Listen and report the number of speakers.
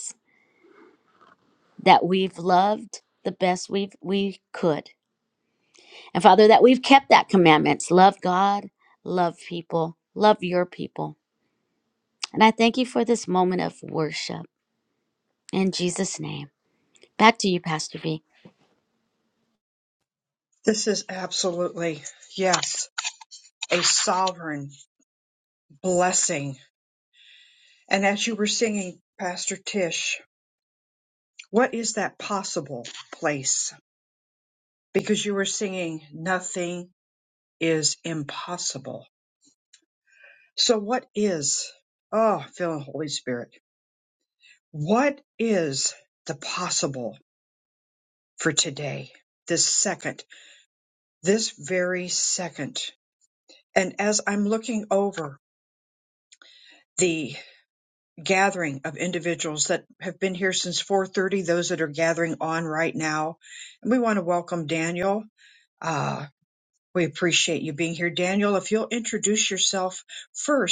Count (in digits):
2